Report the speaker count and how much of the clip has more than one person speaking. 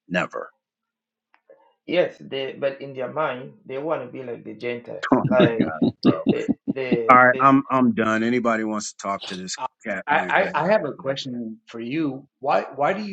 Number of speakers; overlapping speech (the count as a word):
three, about 13%